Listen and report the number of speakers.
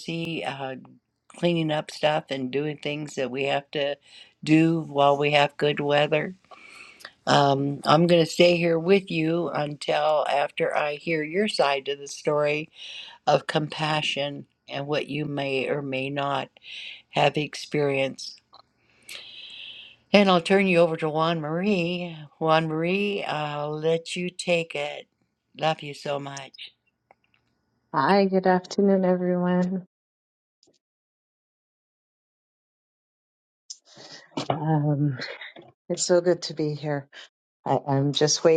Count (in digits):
2